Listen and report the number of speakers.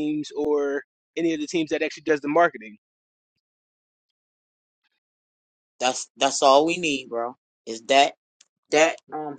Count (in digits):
2